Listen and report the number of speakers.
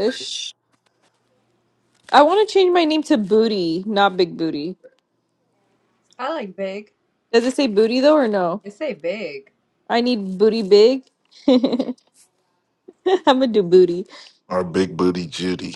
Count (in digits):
3